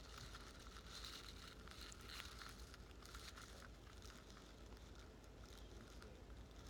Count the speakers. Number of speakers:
0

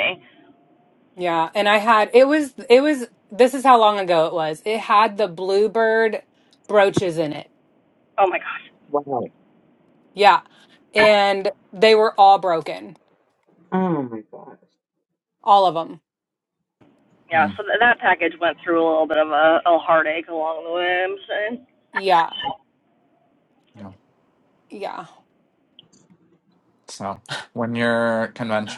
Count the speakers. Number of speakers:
4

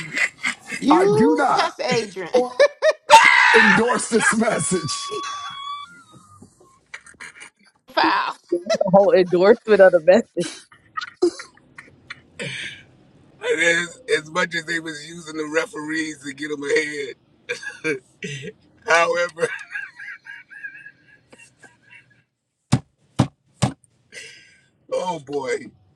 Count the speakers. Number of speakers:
4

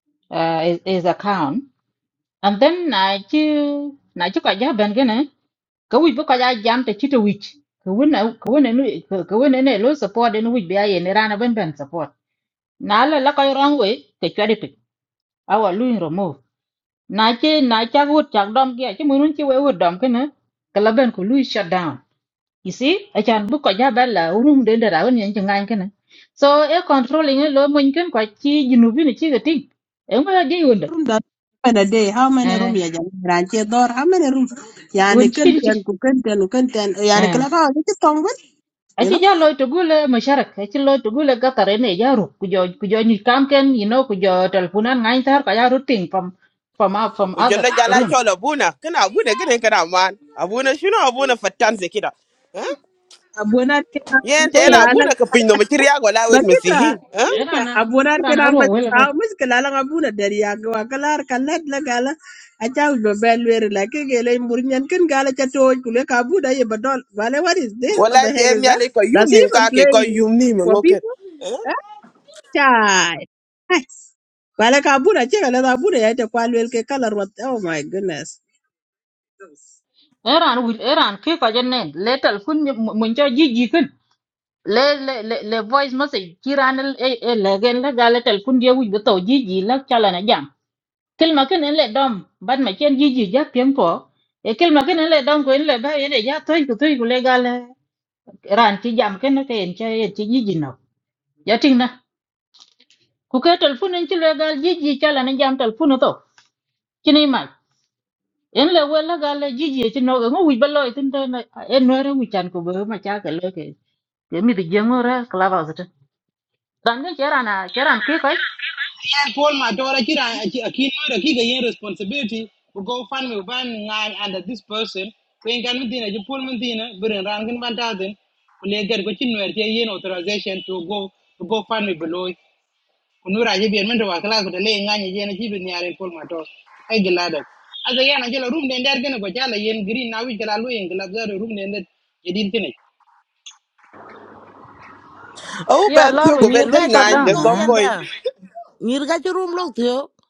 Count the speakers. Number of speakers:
5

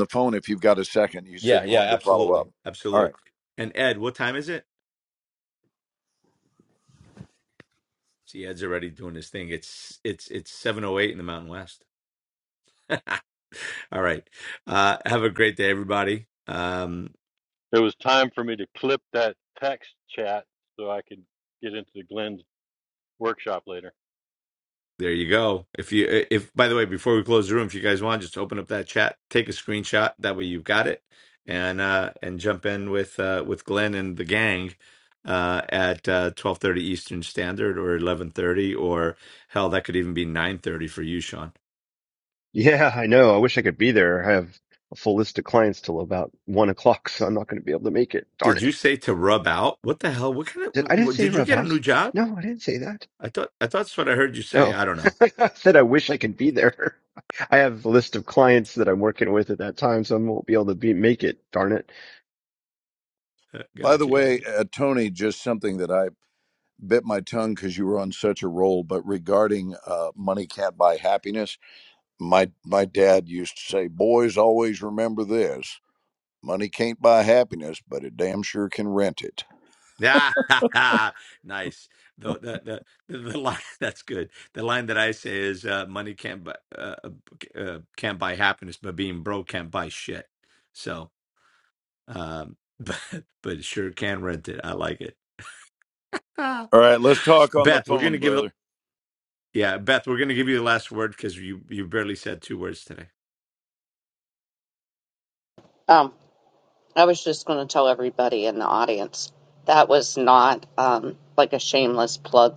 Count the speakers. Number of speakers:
5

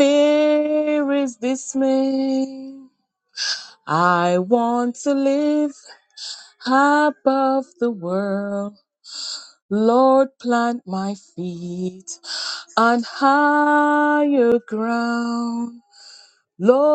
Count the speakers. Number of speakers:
1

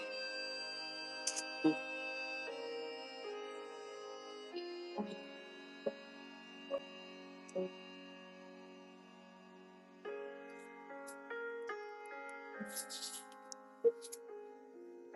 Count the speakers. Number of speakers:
0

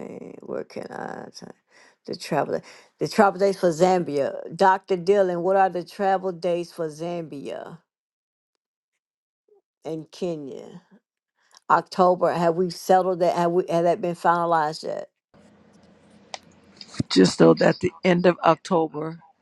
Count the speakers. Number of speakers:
2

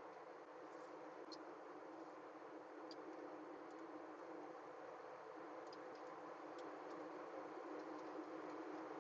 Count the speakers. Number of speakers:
0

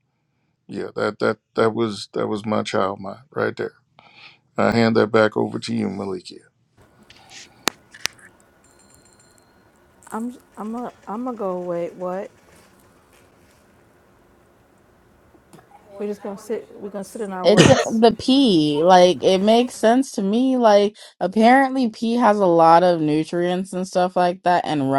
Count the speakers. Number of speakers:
3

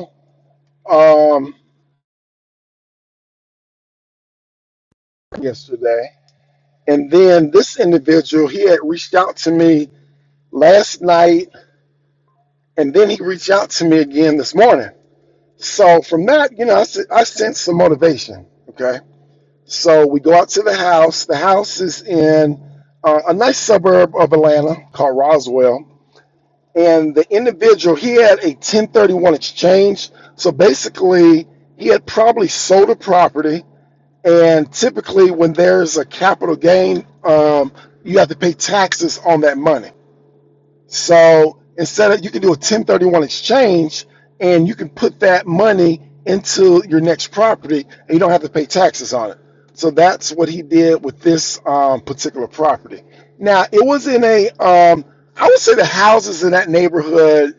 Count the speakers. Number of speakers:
1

